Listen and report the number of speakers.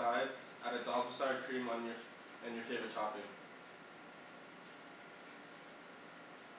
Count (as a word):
one